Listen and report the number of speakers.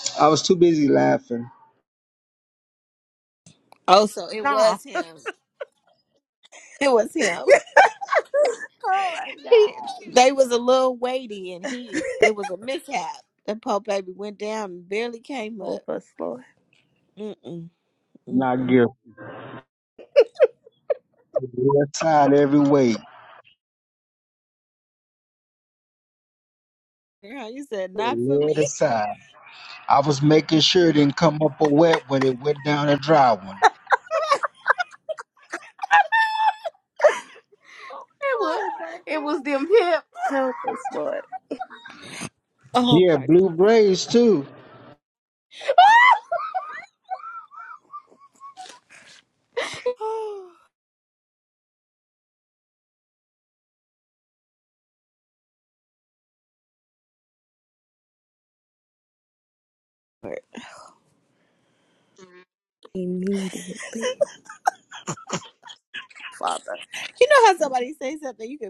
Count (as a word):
four